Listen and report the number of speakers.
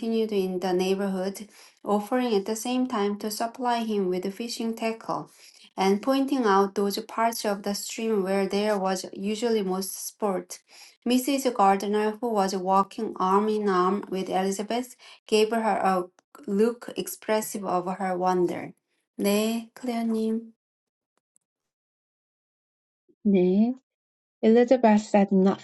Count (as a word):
two